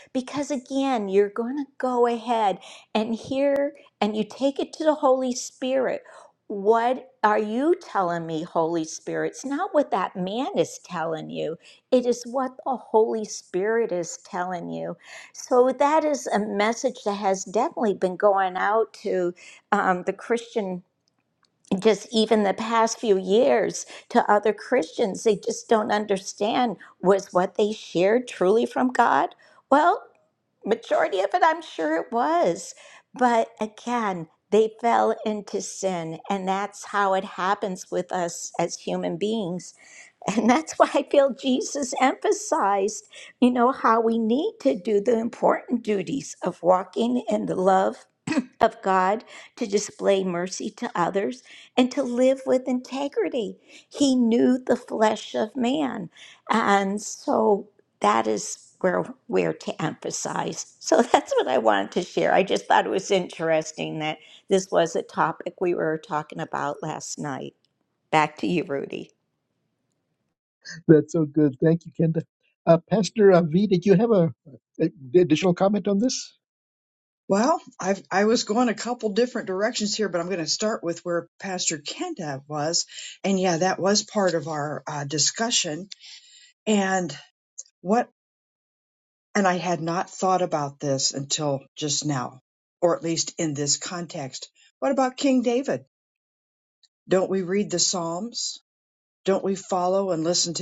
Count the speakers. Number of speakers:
3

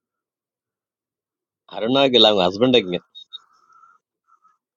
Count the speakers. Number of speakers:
1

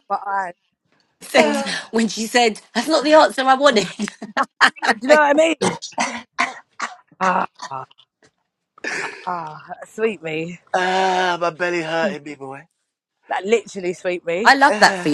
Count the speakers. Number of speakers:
3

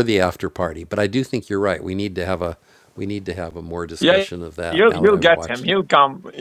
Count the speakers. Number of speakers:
2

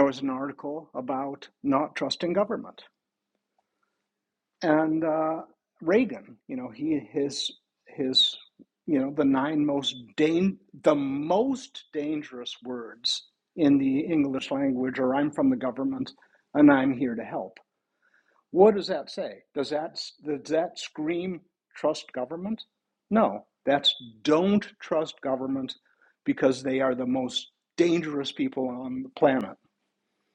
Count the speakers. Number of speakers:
1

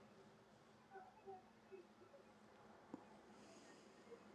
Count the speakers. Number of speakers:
0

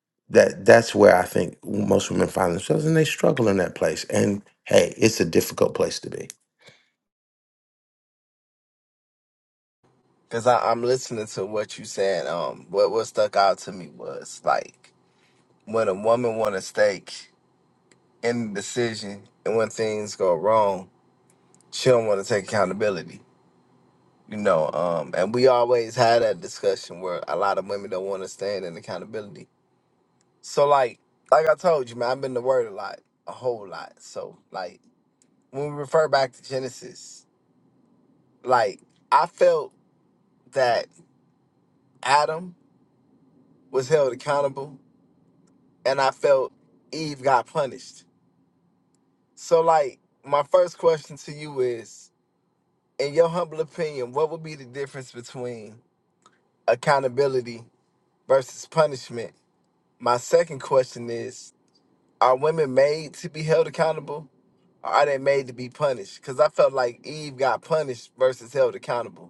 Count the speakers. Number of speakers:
2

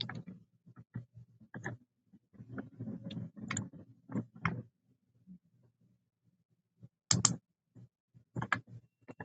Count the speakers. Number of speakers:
0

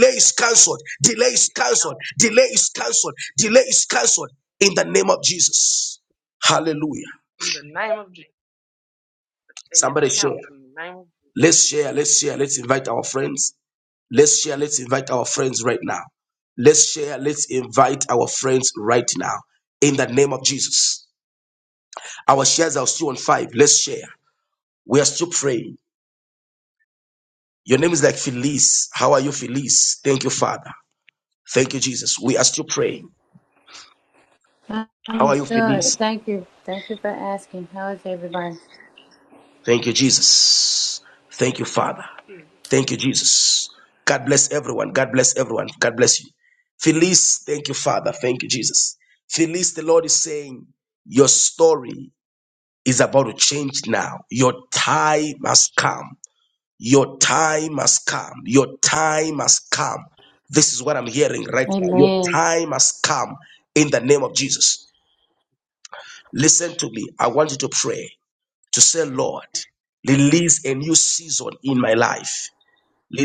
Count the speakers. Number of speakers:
3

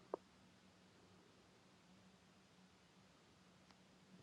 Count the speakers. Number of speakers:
0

